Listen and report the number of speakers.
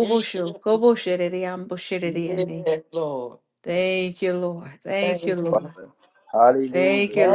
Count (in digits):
3